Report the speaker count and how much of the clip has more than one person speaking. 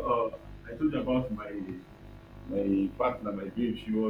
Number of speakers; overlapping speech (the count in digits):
1, no overlap